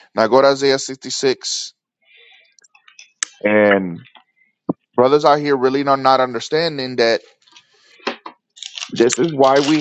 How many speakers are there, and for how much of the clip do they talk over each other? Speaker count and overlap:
1, no overlap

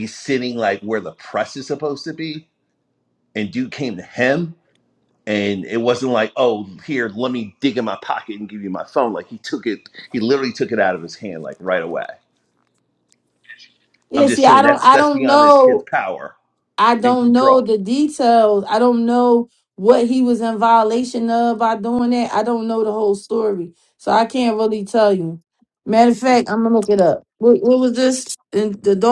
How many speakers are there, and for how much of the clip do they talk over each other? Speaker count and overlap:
2, about 8%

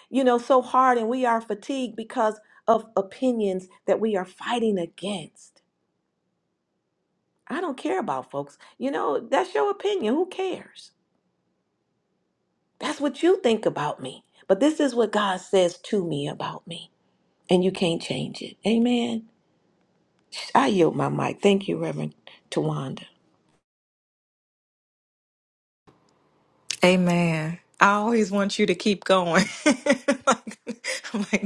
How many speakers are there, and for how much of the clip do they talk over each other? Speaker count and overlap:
2, no overlap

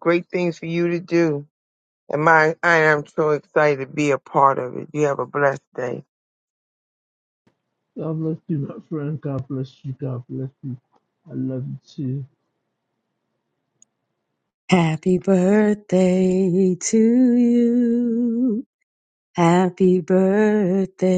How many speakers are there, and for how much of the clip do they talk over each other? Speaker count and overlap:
3, no overlap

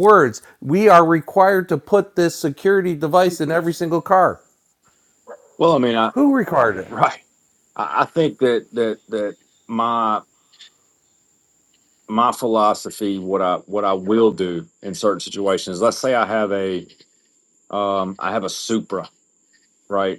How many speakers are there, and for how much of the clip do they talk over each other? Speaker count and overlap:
2, no overlap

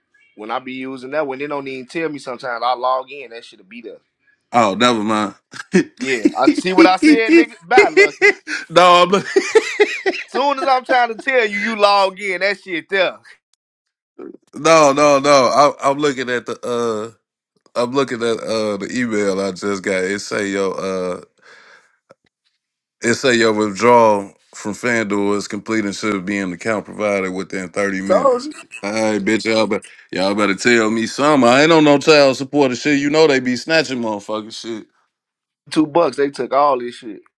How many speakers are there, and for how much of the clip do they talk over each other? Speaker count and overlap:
2, about 1%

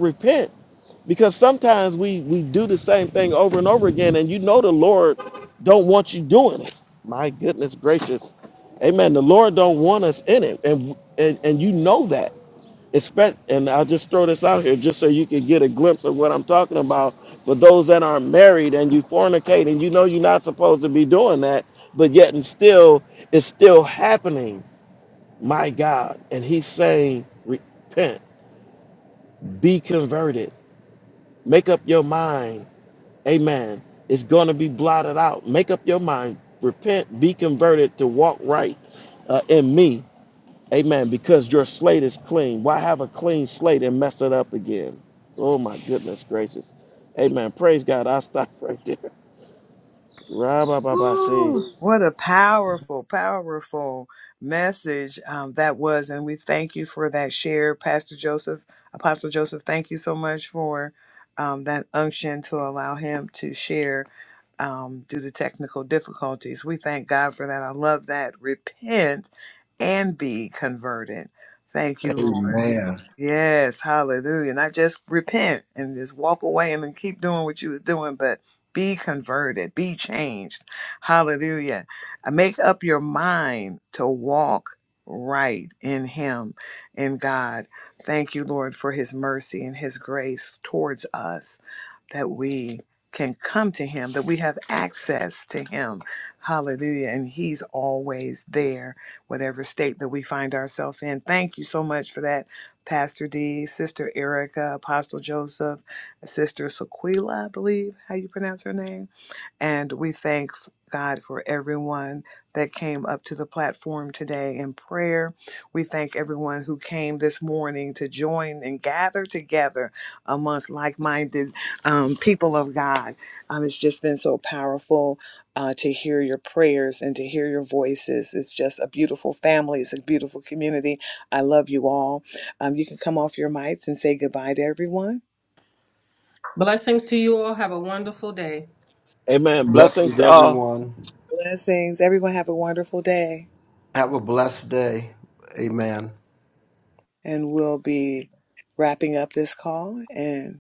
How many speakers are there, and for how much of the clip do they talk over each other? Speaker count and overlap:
4, about 1%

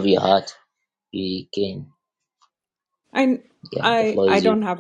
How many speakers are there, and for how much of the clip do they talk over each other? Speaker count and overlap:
2, about 16%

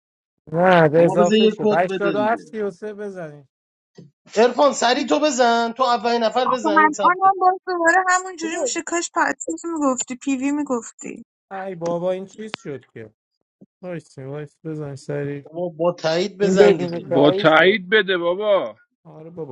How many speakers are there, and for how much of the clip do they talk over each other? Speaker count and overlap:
4, about 20%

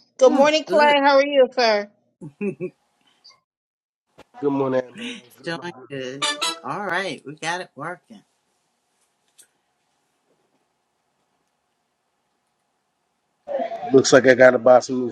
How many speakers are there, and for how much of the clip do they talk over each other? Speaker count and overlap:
3, about 8%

